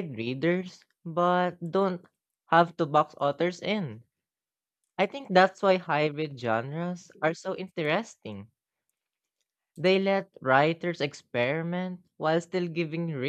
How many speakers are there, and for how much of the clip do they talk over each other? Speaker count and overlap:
one, no overlap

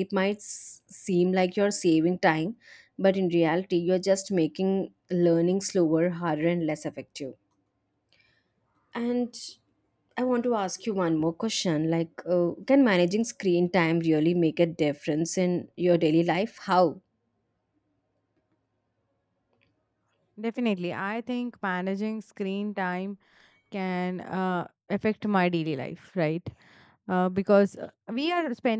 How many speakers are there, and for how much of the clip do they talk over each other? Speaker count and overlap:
two, no overlap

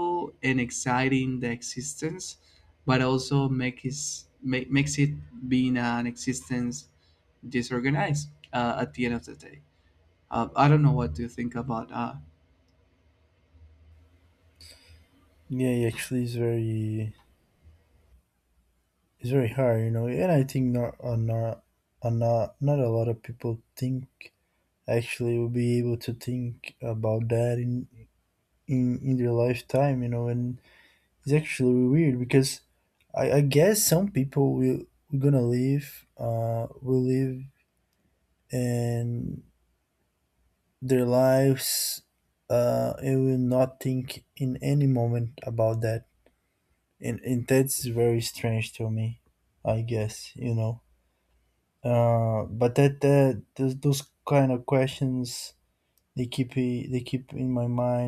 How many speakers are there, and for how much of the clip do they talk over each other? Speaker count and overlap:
two, no overlap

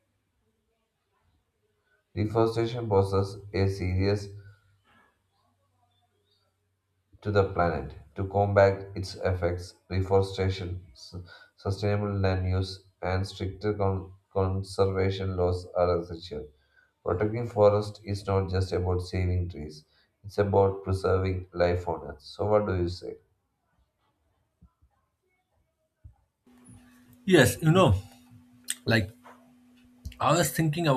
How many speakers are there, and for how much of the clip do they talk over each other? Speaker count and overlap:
two, no overlap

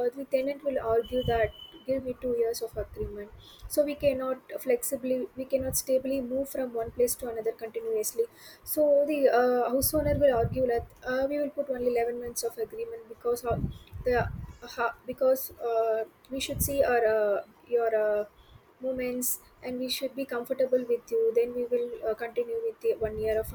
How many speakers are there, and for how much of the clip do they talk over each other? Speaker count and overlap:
one, no overlap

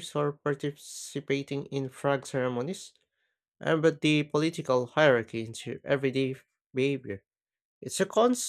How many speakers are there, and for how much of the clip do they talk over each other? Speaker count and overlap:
one, no overlap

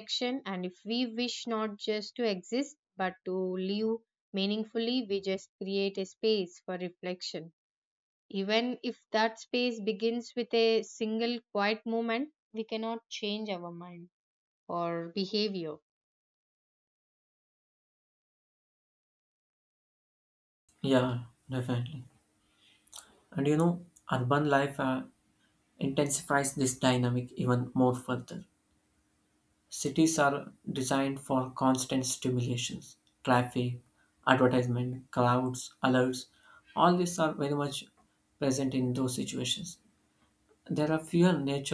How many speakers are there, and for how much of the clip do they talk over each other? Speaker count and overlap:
two, no overlap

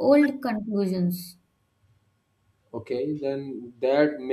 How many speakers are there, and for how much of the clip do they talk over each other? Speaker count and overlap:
two, no overlap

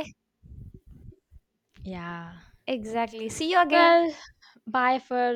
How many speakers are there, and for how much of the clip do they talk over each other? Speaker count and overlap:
two, about 5%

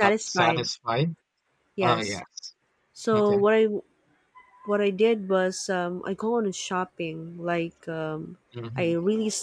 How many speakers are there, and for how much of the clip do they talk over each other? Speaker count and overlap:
two, about 14%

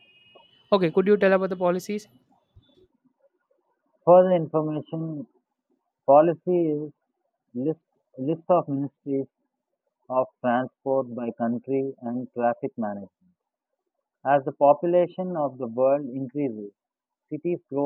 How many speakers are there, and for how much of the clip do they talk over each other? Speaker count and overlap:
two, no overlap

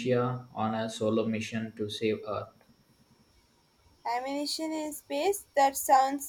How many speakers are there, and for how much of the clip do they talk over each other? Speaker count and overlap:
two, no overlap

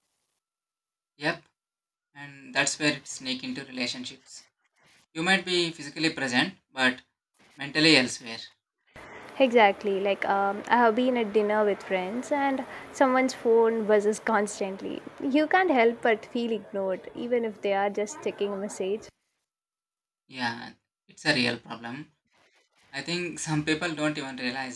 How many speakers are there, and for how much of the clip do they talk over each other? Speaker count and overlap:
two, no overlap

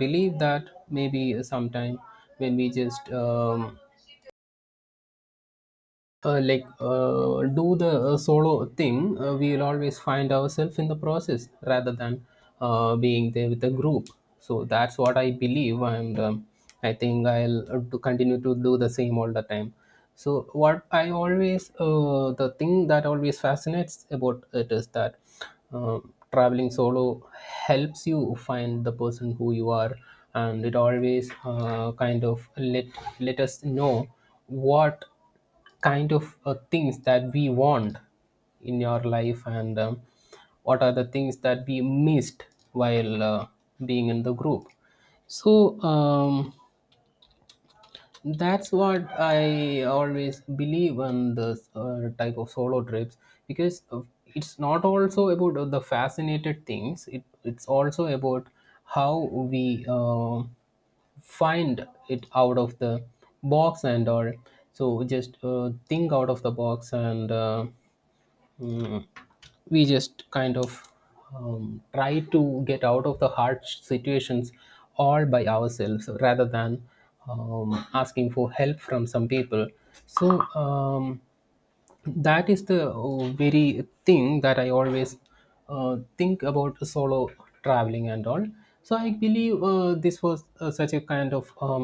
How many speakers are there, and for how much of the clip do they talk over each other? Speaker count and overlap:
one, no overlap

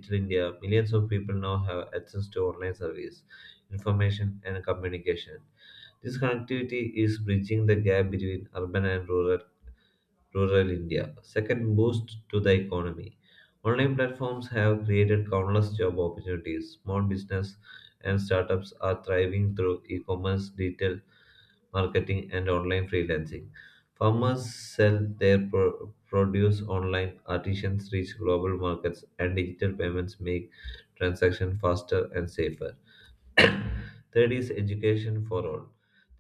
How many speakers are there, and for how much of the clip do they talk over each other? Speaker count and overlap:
one, no overlap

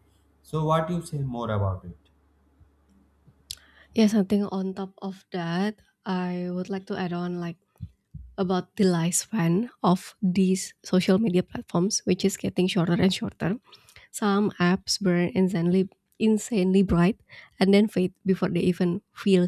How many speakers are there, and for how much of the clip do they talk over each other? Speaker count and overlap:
two, no overlap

